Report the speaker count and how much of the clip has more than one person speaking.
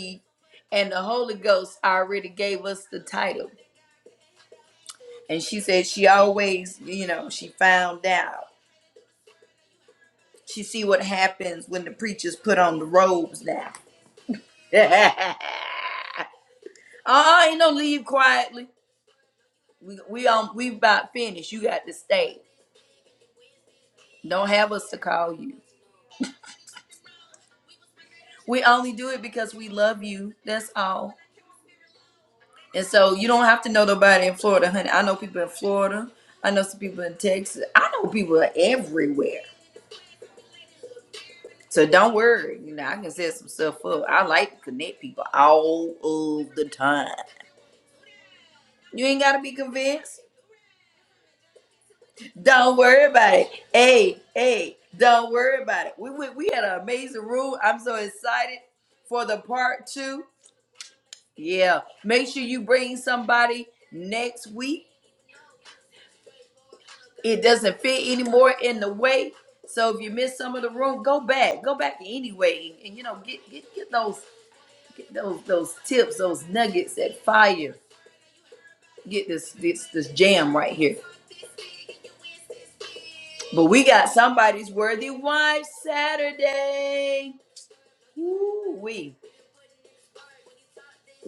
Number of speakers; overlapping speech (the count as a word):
one, no overlap